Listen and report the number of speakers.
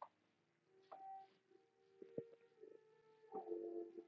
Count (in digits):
0